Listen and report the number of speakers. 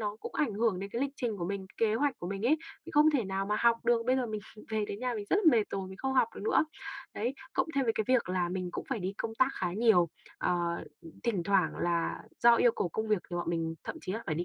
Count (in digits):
1